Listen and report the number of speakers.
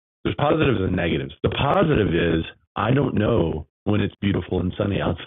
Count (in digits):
1